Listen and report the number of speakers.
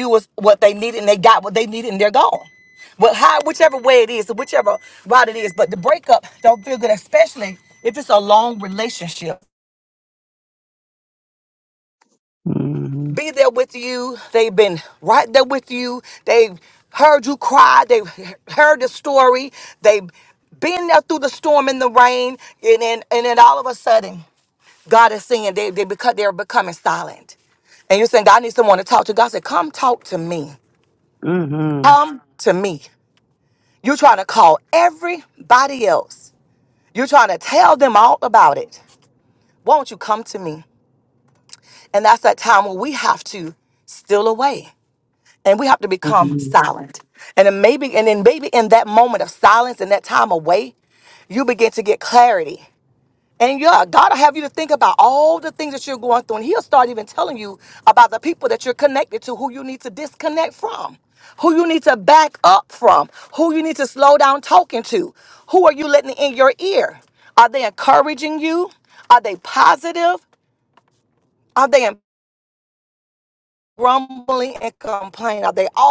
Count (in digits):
2